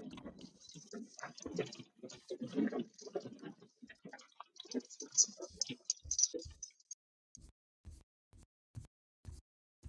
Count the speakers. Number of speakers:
zero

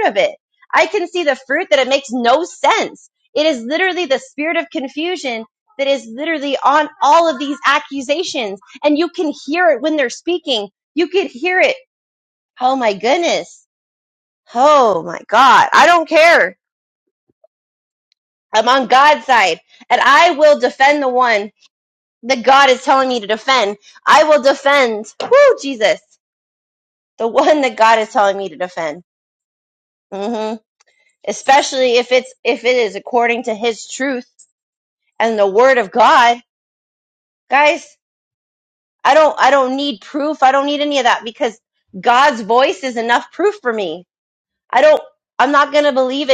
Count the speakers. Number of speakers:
one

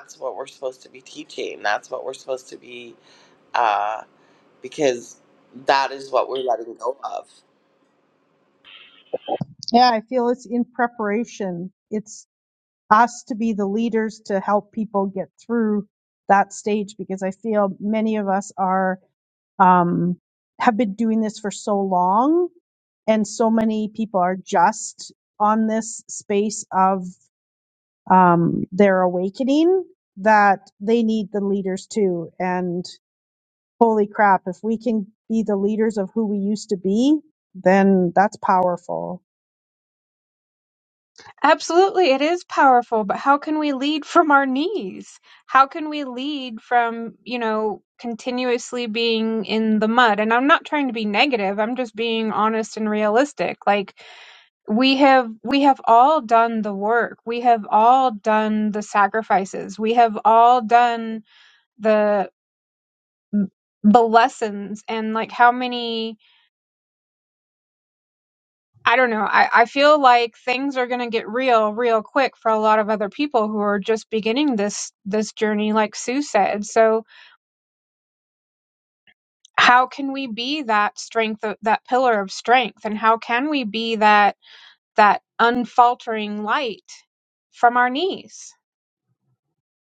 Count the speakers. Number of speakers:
three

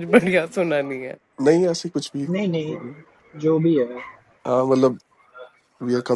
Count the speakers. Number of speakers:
three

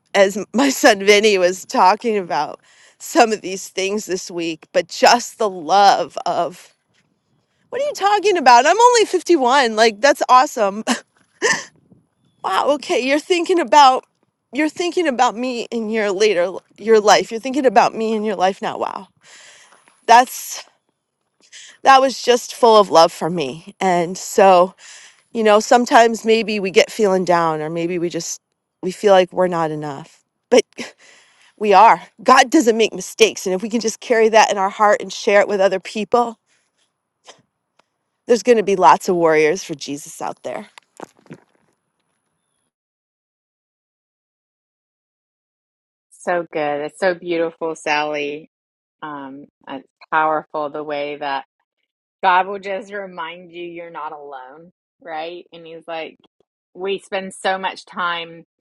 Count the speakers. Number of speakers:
two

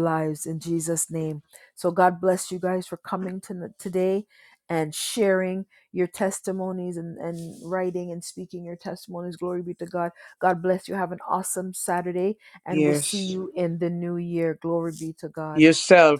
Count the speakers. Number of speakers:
two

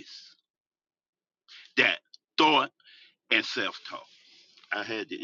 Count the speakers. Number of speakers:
one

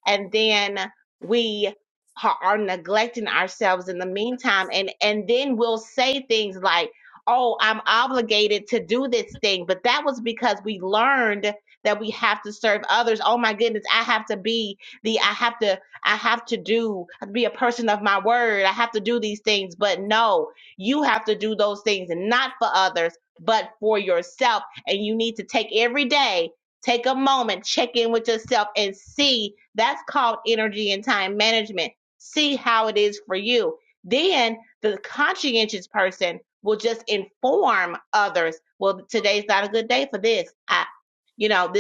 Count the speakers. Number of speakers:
one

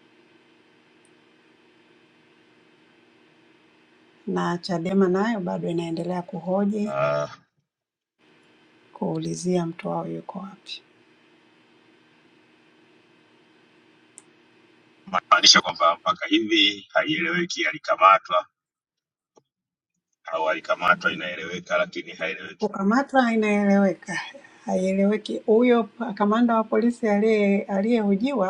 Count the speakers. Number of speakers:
two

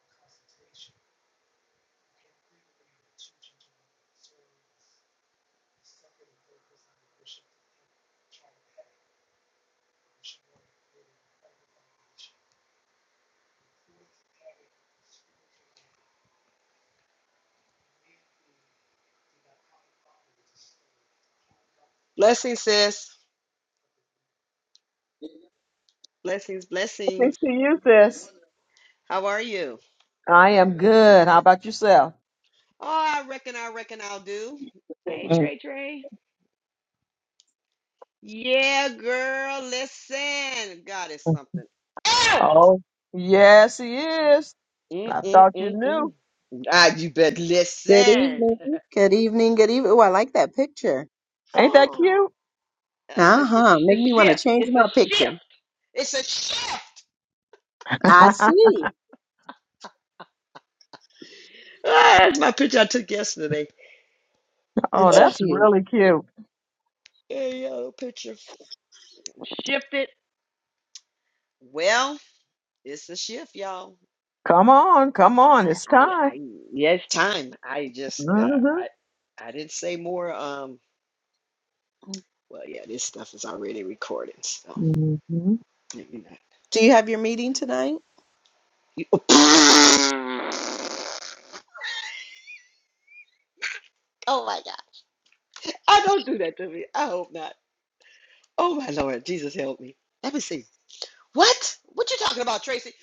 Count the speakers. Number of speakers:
three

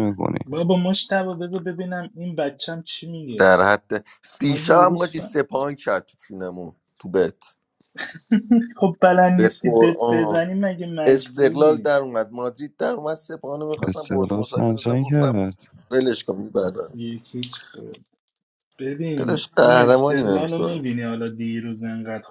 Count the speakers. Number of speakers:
three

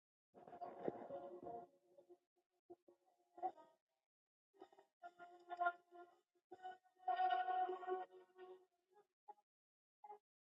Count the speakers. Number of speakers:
zero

